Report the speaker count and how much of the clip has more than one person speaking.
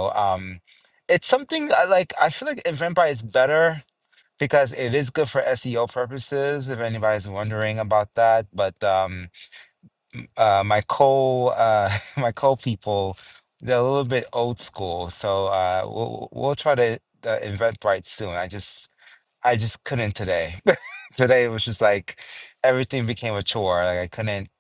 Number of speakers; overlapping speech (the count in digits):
1, no overlap